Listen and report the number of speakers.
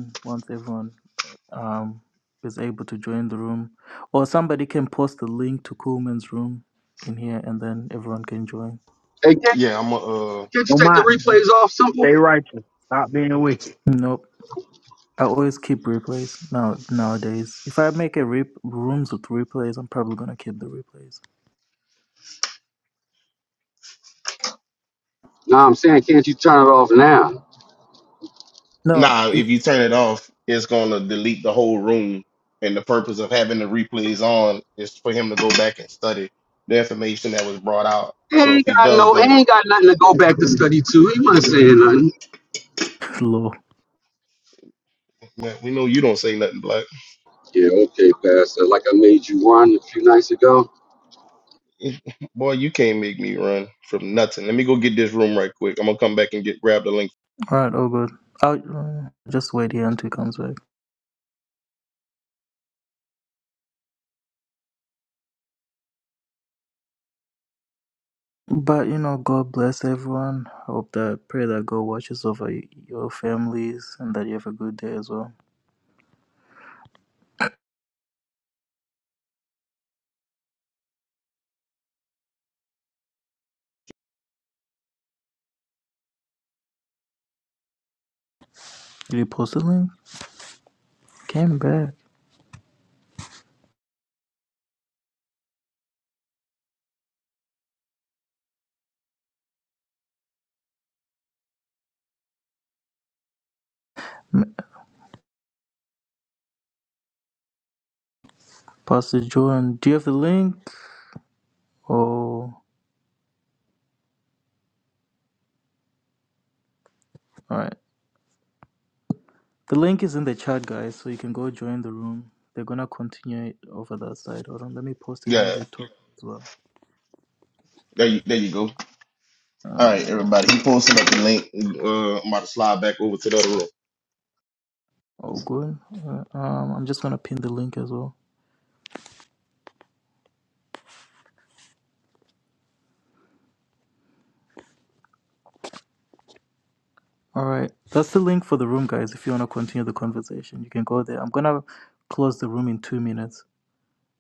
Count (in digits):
4